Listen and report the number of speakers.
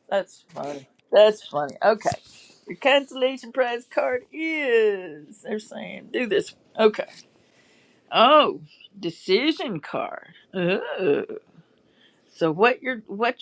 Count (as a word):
one